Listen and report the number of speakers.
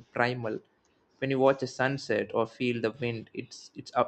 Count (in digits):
1